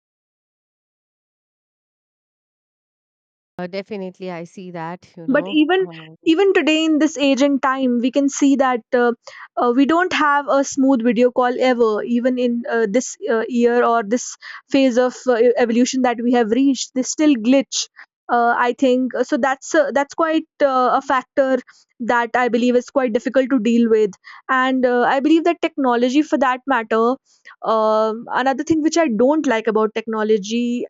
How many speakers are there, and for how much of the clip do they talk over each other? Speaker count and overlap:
2, about 2%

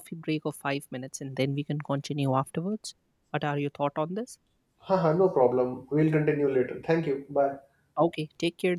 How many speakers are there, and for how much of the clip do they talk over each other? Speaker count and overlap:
2, no overlap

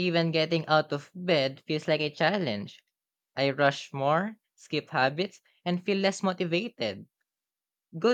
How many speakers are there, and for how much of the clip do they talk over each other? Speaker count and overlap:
1, no overlap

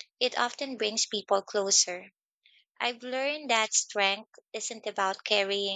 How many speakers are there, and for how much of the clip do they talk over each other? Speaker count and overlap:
1, no overlap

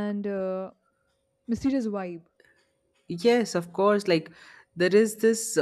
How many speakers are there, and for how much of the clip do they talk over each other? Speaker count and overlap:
2, no overlap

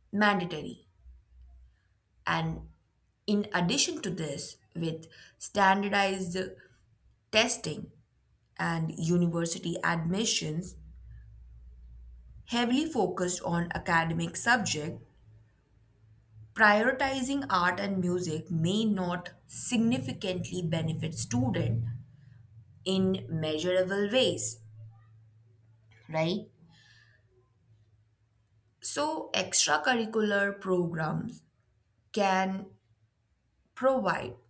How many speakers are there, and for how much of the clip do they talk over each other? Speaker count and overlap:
1, no overlap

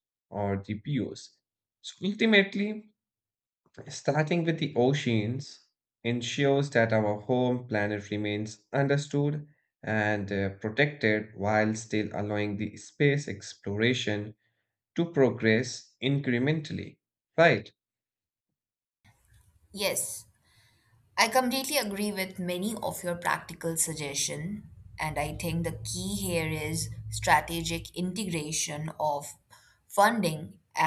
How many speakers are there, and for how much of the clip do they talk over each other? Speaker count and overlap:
2, no overlap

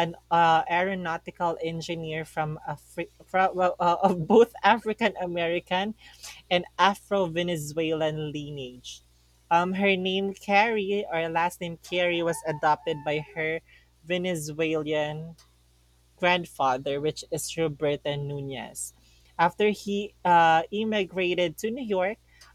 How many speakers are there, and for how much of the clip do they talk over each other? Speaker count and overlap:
1, no overlap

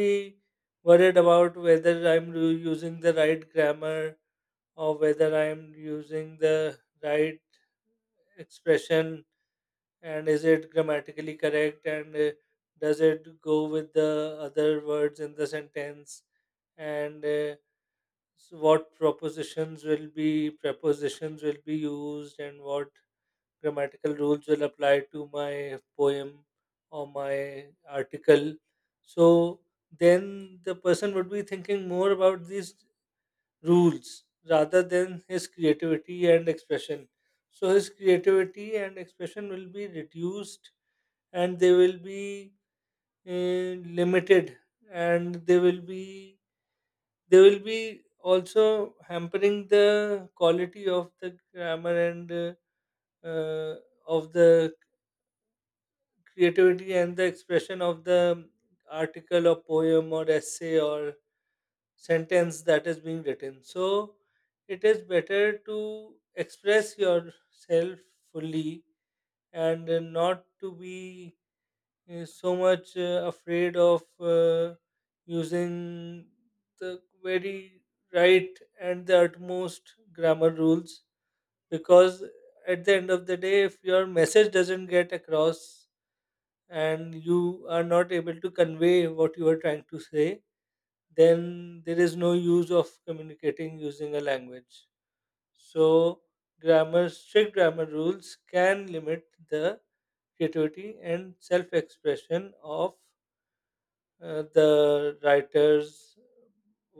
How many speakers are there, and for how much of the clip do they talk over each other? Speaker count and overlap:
1, no overlap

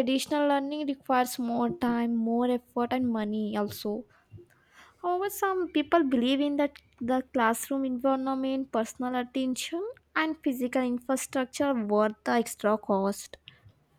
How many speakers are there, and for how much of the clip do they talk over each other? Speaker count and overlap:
1, no overlap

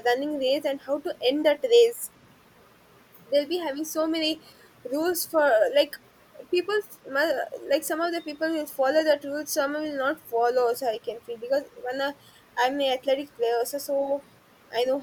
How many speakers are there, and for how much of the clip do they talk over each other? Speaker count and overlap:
1, no overlap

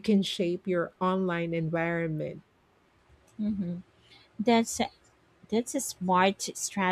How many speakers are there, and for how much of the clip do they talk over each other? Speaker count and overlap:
2, no overlap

